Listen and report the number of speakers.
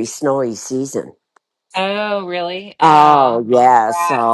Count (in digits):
2